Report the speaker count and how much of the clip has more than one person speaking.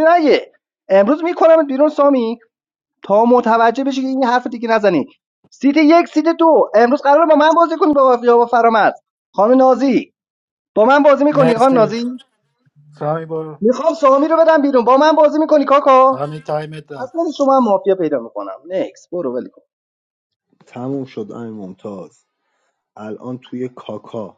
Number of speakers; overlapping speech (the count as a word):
three, about 3%